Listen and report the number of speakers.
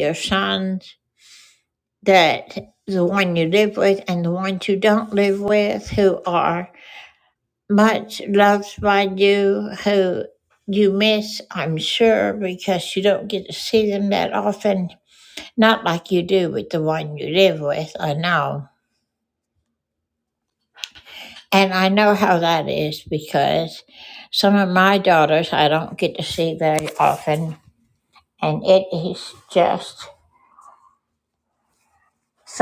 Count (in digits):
1